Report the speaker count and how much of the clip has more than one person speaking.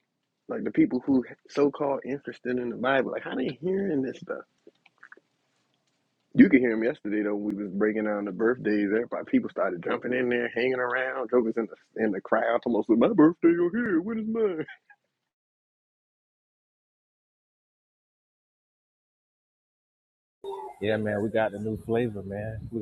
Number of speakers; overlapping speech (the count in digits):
2, no overlap